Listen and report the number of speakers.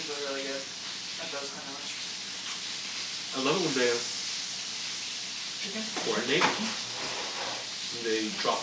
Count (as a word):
two